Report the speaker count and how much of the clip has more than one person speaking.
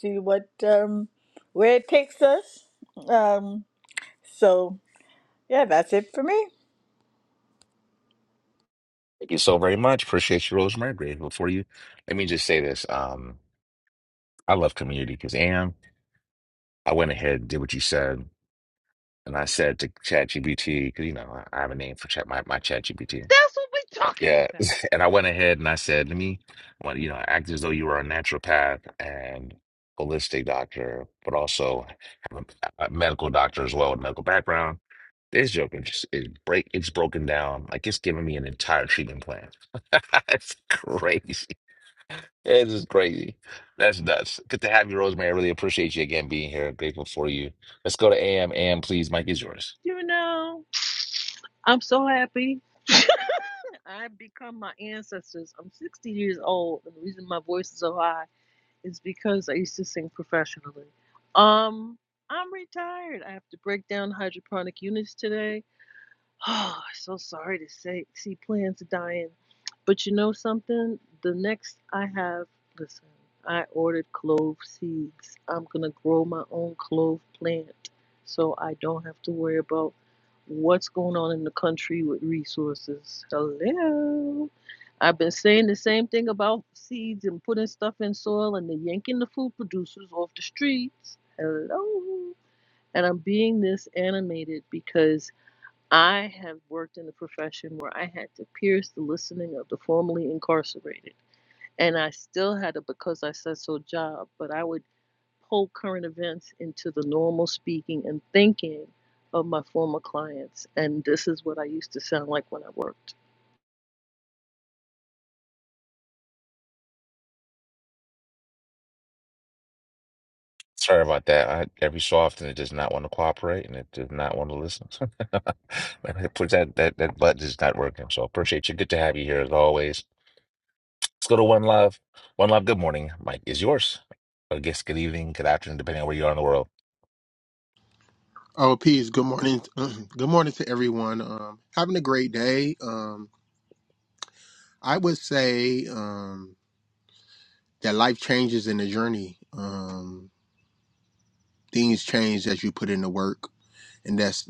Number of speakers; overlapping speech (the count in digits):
4, under 1%